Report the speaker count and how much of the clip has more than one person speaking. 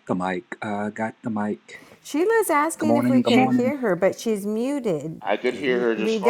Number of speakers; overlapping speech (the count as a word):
three, about 23%